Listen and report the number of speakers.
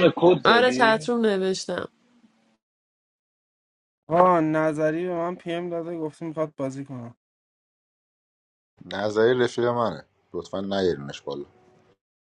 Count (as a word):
four